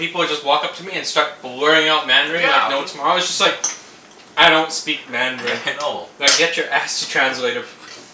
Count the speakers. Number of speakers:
two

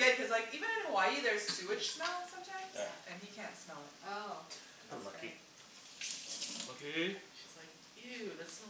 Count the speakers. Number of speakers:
four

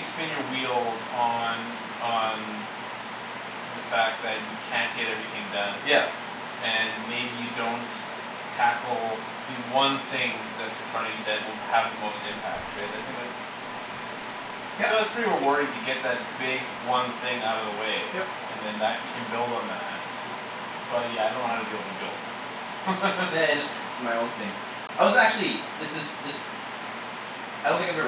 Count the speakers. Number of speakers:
two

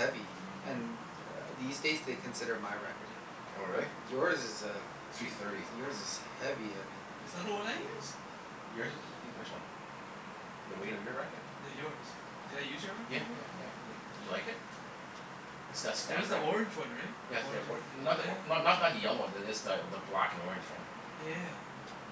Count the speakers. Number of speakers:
three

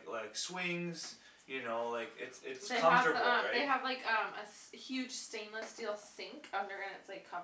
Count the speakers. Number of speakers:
two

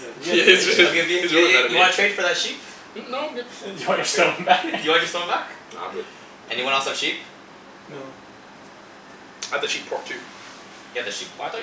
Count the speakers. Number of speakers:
three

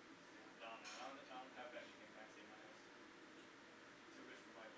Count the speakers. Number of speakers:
one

